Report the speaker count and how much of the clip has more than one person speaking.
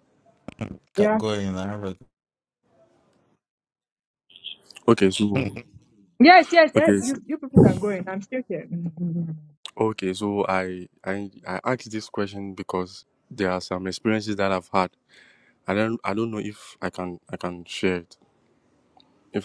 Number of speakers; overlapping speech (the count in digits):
3, about 5%